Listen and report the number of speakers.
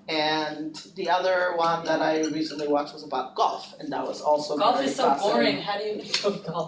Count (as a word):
two